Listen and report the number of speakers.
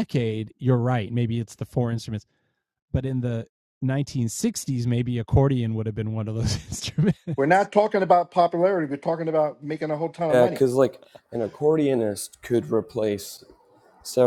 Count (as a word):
three